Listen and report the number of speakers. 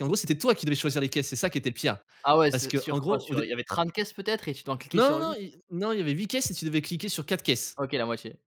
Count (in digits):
2